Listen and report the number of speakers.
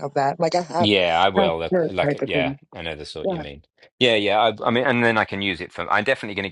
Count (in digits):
2